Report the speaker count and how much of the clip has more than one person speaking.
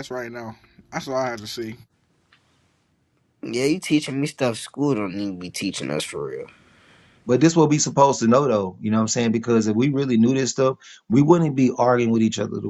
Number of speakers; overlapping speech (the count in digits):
3, no overlap